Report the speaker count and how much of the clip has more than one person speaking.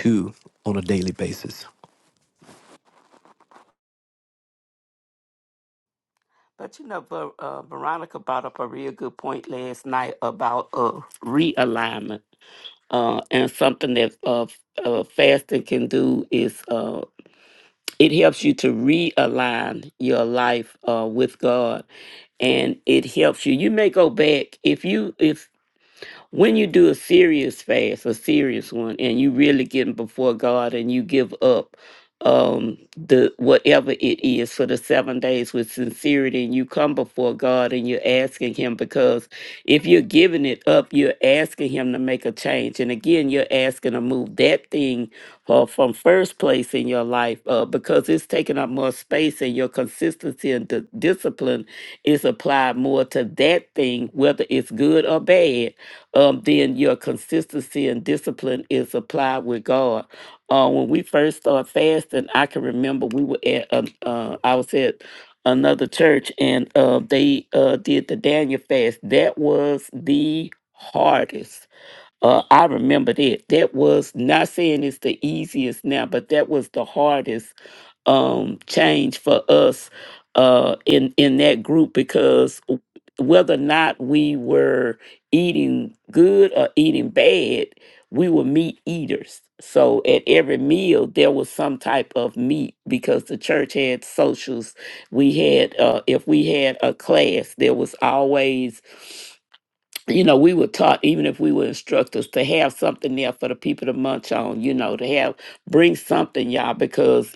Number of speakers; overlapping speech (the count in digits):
2, no overlap